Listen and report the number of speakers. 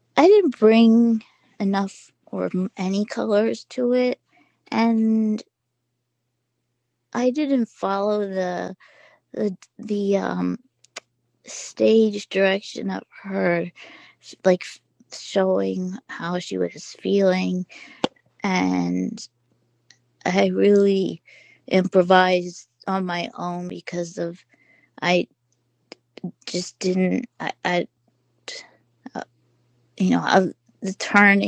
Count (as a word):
one